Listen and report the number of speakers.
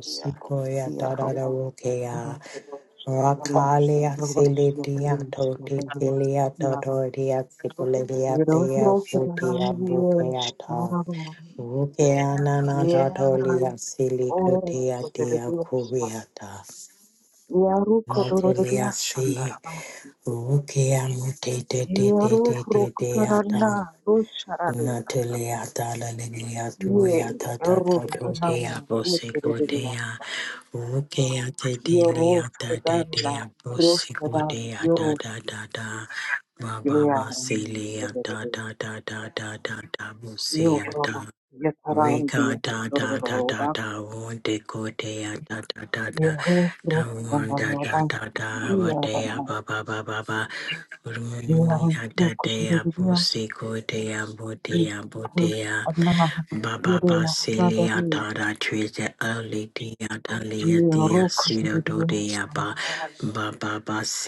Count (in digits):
2